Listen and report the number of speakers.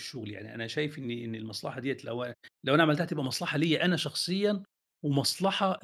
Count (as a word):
one